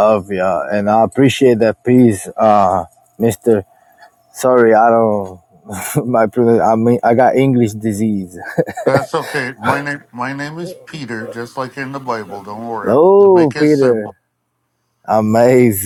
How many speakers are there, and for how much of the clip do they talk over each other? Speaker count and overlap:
2, about 8%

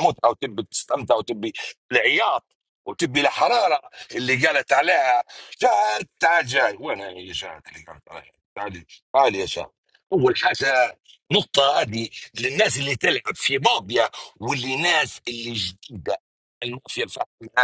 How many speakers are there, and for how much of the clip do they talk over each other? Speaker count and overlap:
1, no overlap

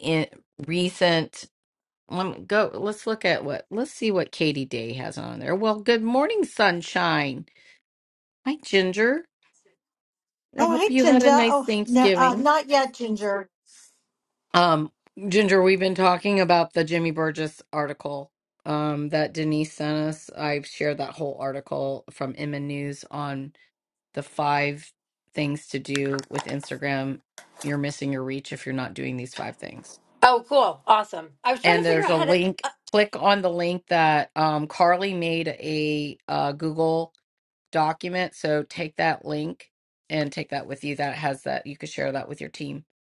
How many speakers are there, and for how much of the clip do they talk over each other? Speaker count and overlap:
3, about 7%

